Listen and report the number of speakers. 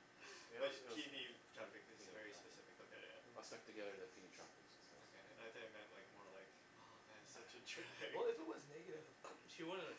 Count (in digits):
3